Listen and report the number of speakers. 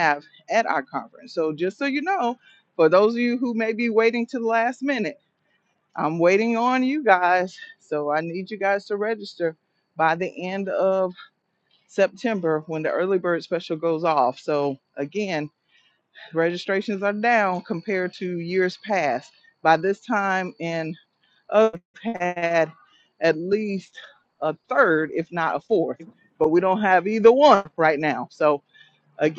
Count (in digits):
1